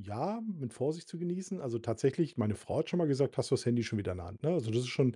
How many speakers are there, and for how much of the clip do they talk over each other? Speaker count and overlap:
1, no overlap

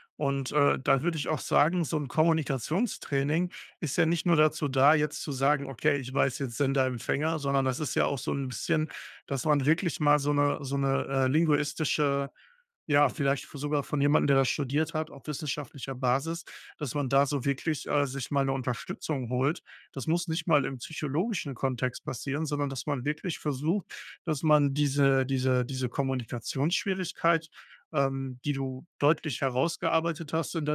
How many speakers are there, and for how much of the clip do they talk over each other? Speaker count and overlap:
1, no overlap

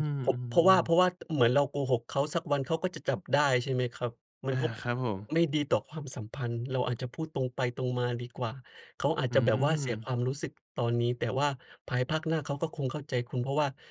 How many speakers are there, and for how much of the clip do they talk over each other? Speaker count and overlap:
2, about 5%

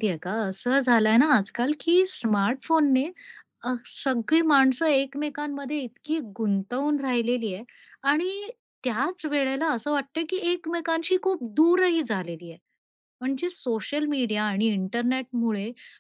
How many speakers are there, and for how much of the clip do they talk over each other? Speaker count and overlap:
1, no overlap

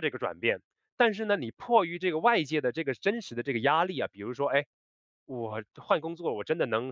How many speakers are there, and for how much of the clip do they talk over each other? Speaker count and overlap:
1, no overlap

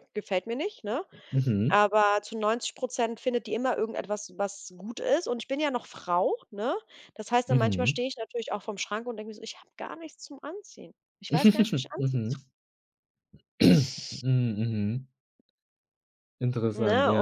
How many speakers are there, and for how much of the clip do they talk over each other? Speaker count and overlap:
2, about 8%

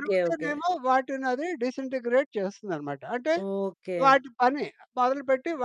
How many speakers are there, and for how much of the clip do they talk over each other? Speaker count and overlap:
2, about 12%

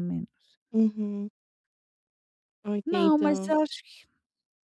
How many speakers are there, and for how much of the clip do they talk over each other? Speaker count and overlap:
2, about 14%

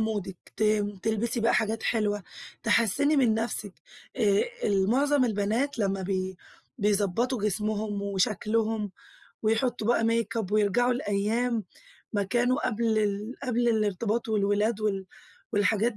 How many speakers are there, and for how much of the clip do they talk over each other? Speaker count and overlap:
1, no overlap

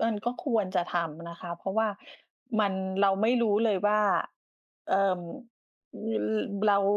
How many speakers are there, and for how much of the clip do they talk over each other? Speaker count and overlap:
1, no overlap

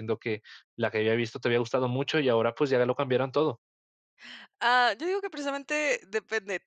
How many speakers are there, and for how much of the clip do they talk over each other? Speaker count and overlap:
2, no overlap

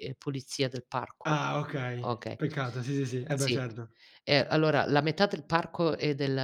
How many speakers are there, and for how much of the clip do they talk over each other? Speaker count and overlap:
2, about 10%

